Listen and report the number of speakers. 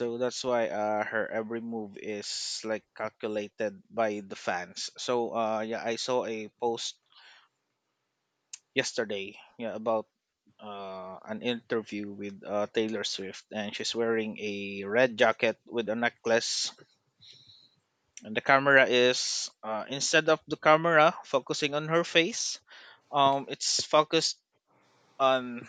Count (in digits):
1